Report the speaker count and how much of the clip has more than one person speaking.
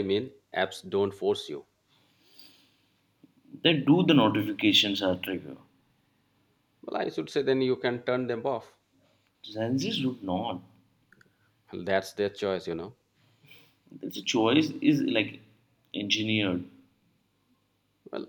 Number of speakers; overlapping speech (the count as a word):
two, no overlap